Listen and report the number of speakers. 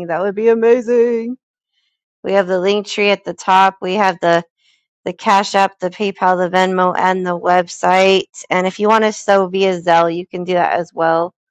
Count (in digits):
1